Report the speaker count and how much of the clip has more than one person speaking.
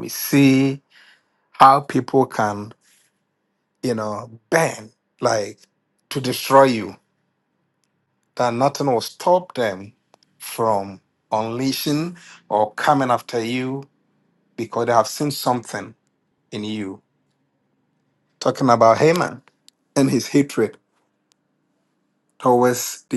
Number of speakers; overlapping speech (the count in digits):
1, no overlap